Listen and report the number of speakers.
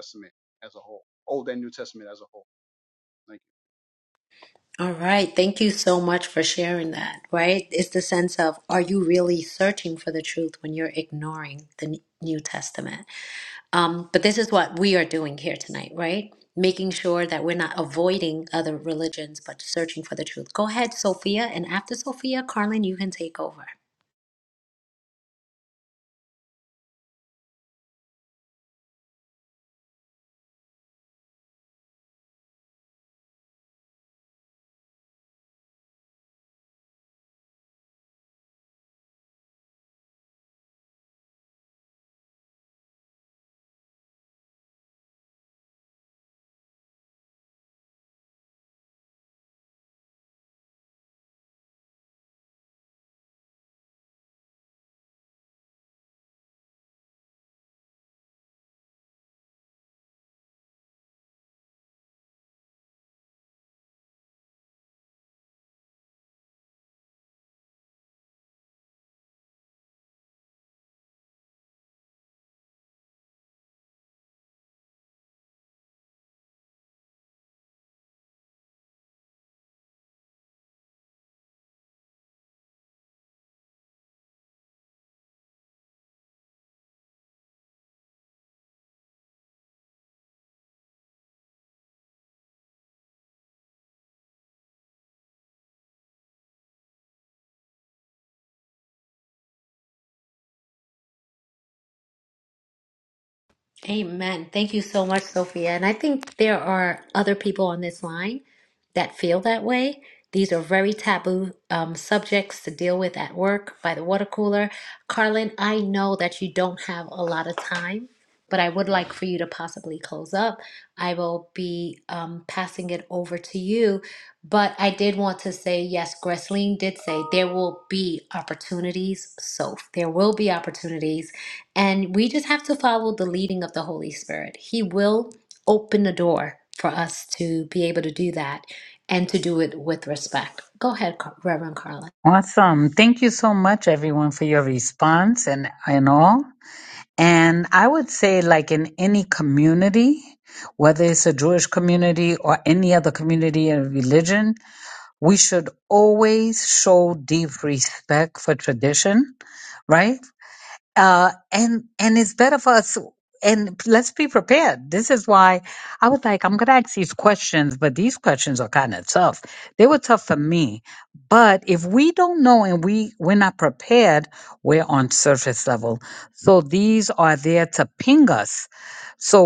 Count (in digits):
3